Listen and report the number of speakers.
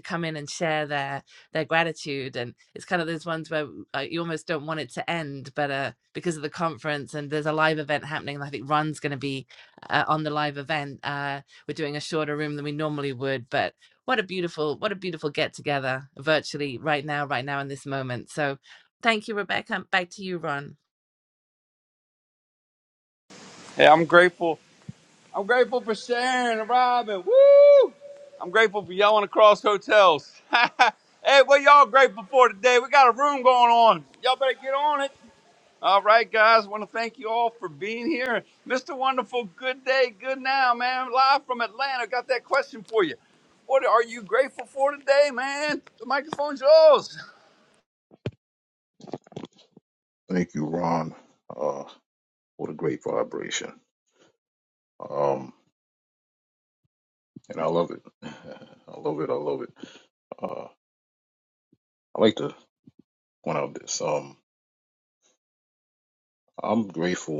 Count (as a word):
three